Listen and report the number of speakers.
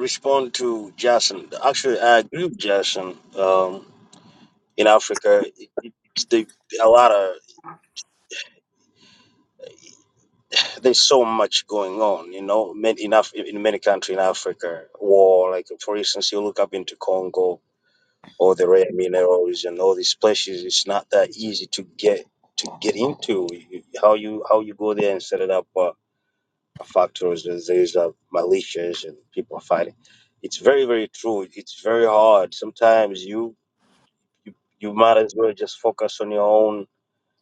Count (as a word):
one